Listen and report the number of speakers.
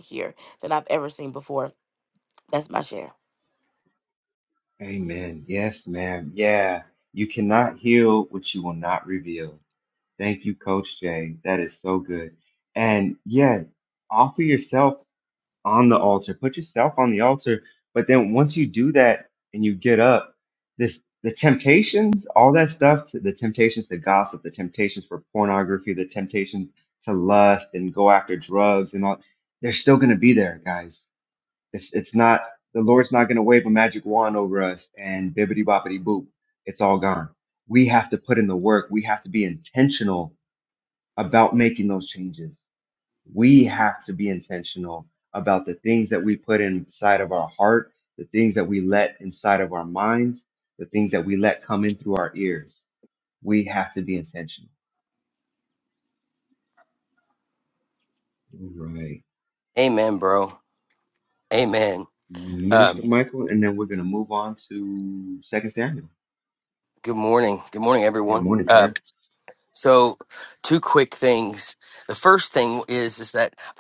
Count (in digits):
3